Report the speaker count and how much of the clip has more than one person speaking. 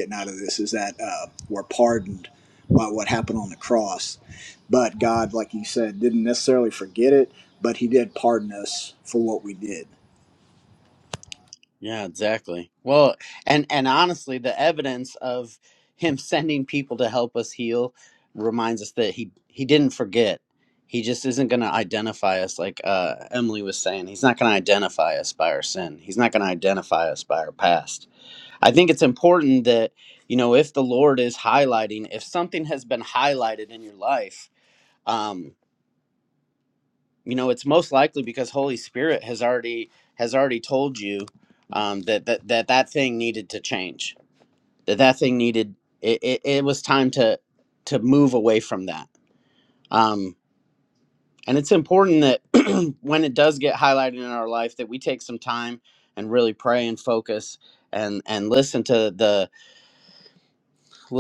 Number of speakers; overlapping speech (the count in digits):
2, no overlap